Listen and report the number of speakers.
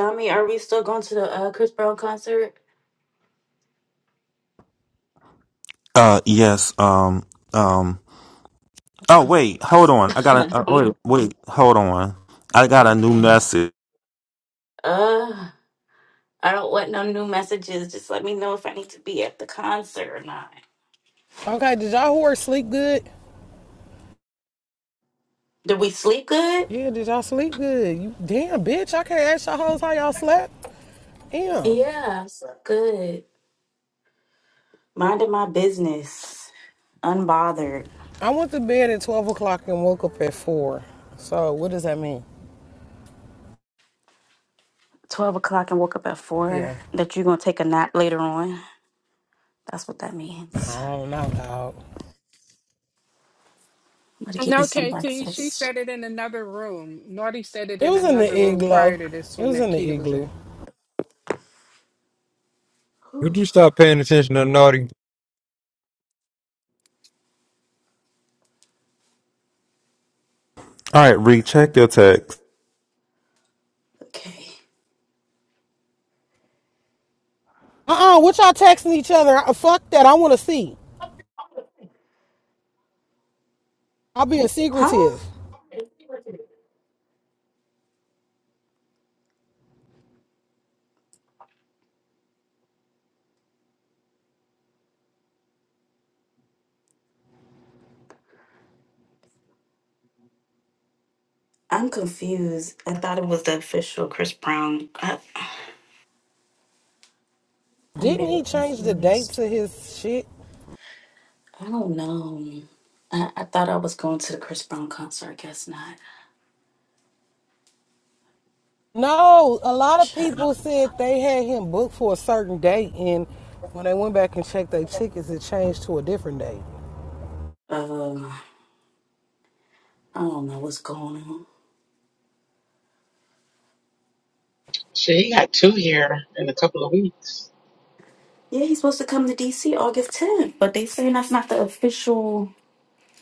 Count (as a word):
six